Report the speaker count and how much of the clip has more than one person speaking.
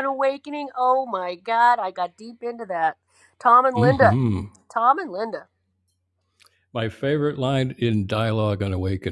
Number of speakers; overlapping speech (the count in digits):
2, about 4%